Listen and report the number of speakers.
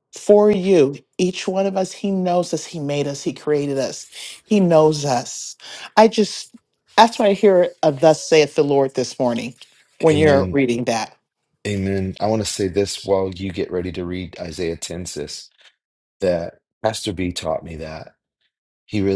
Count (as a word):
two